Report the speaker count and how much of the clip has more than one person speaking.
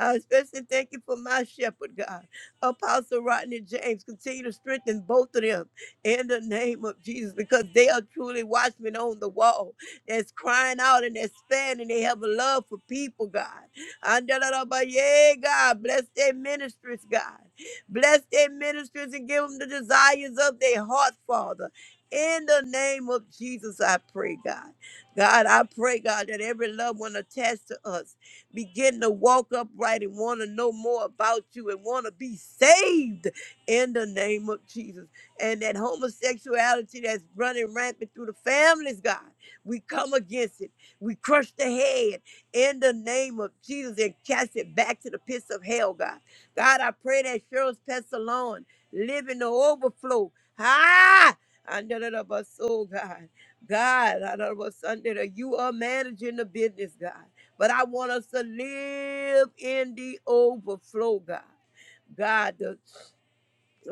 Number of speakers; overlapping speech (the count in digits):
1, no overlap